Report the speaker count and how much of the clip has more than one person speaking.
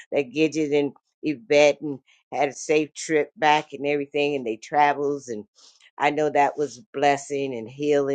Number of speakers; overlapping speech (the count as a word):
one, no overlap